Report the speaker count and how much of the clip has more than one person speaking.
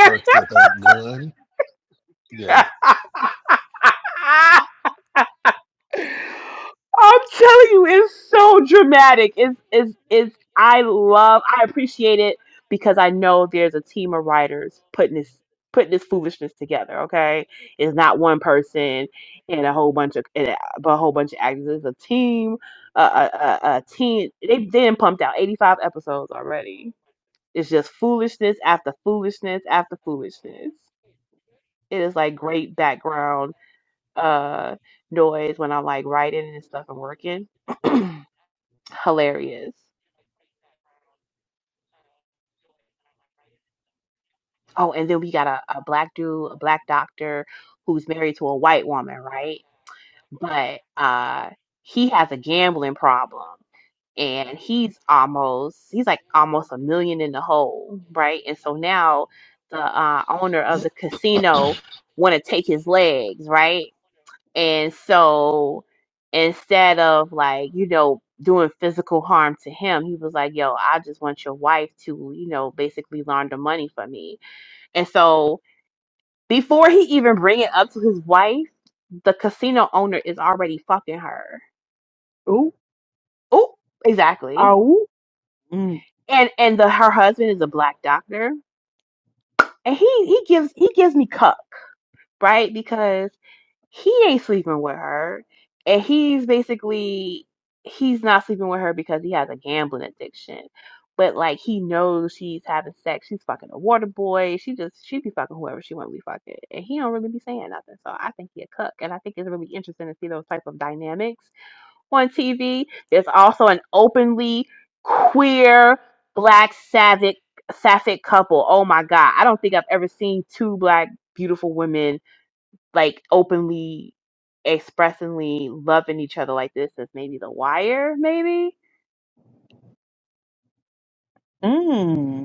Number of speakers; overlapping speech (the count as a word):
three, under 1%